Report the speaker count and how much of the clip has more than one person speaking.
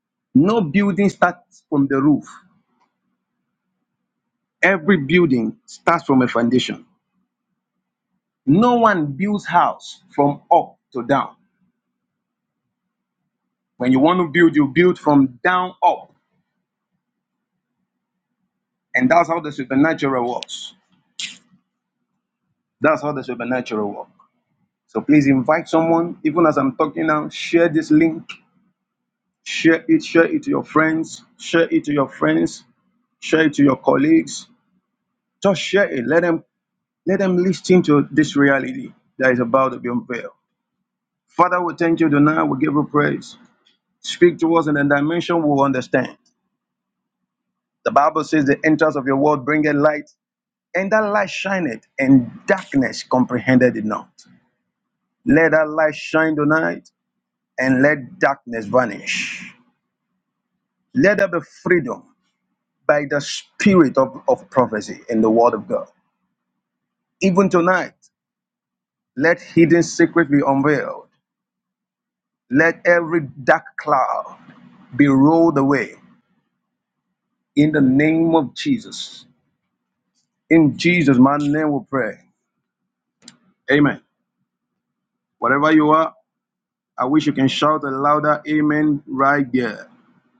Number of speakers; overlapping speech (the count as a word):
one, no overlap